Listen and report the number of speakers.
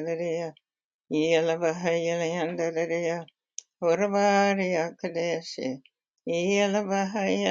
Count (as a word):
one